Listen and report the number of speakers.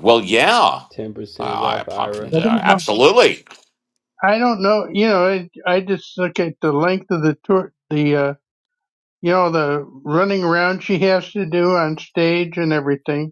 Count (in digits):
3